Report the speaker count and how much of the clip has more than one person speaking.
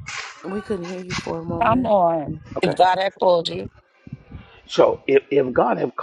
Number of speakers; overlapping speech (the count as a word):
three, about 9%